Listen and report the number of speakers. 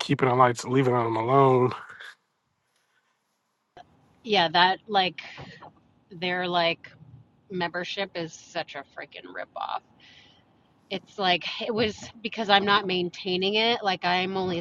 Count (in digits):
2